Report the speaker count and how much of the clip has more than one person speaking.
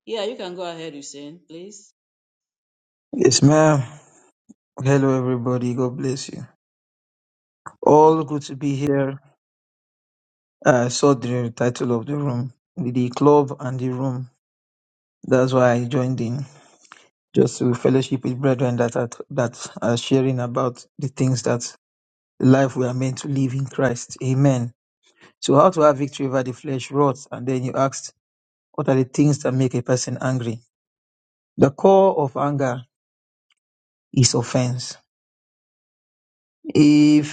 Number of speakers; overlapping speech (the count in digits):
2, about 1%